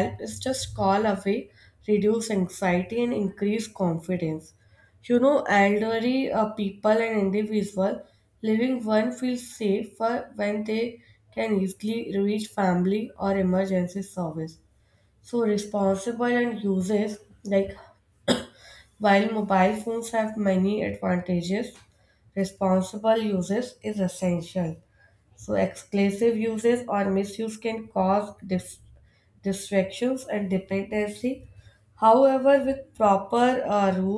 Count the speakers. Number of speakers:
one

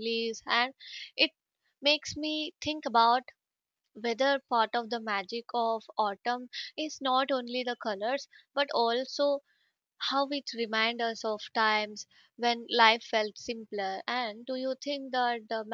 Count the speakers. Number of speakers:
one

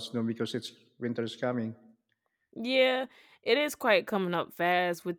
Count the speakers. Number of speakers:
two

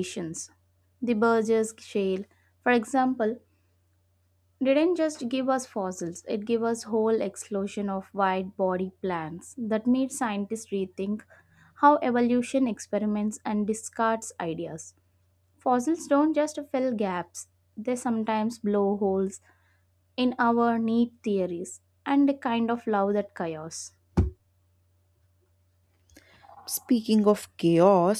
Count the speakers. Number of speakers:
two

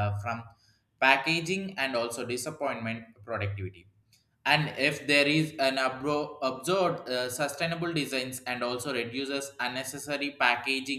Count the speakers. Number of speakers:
one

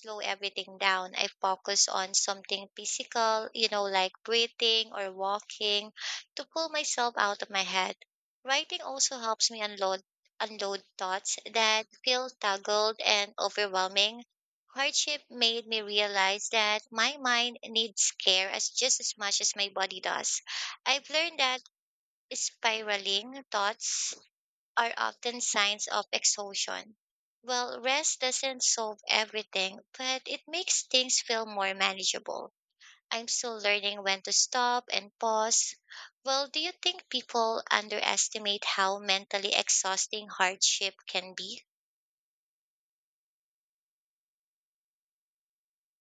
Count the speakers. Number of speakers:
one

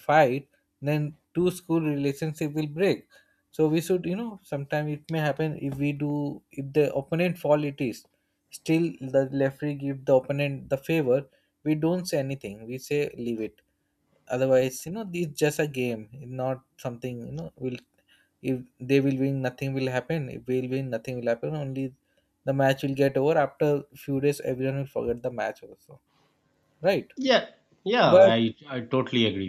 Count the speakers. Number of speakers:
two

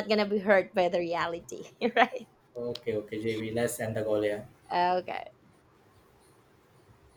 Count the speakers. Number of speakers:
two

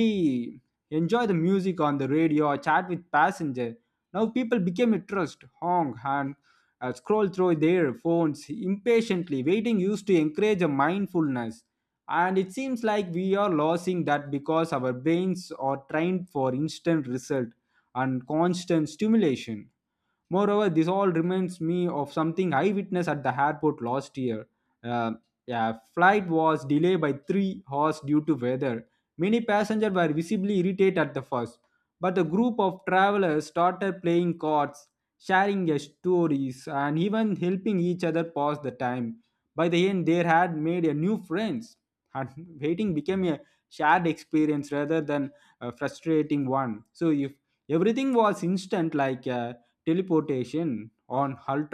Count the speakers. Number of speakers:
one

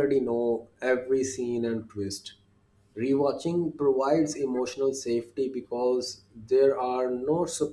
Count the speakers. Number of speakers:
one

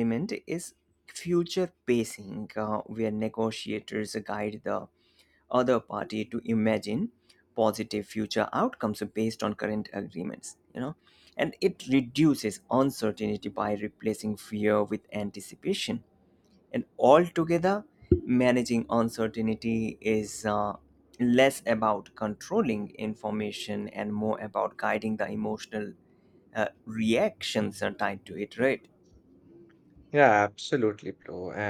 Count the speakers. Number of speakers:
two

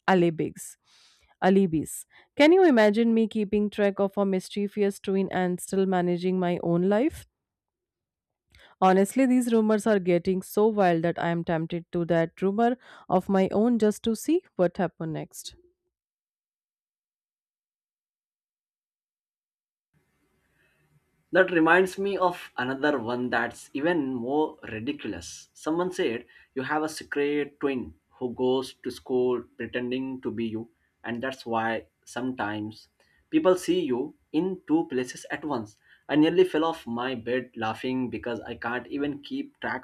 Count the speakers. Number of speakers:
two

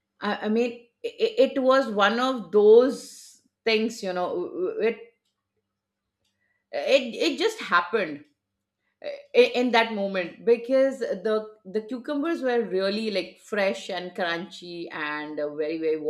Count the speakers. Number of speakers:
one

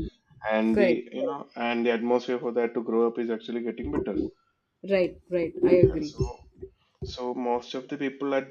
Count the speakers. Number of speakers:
two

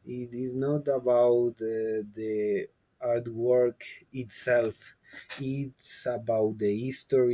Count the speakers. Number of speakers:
one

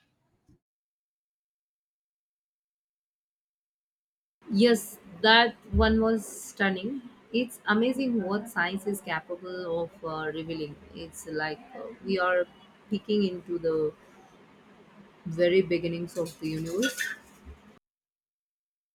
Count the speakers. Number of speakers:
one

